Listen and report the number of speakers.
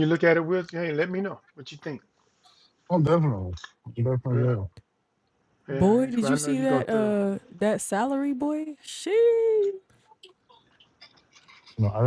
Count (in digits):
3